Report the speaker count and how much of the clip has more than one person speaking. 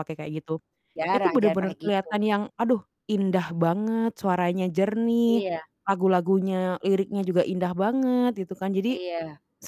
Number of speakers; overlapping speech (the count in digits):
2, about 13%